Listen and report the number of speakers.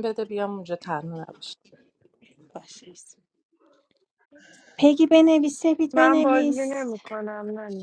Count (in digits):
3